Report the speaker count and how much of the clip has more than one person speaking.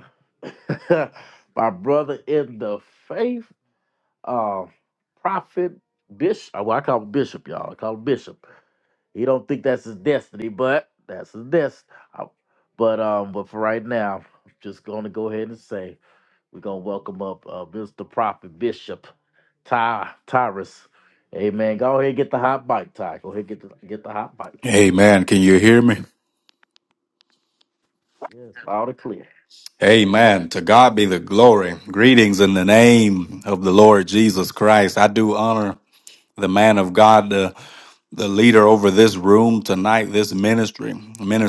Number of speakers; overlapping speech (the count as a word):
two, no overlap